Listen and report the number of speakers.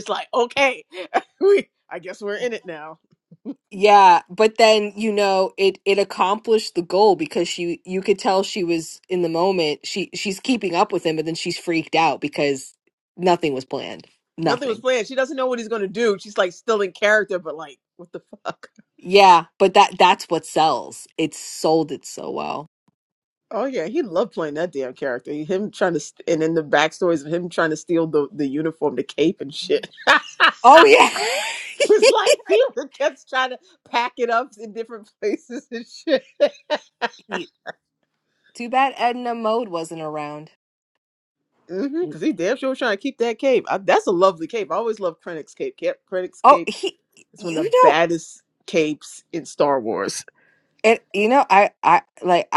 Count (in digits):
2